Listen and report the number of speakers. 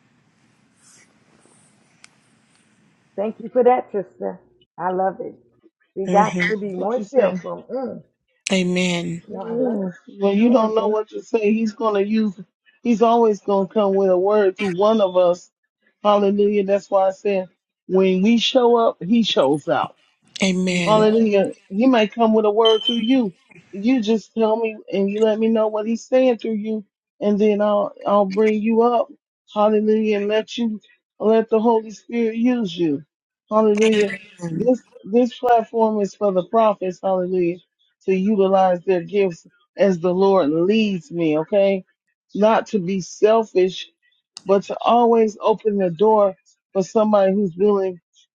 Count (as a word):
three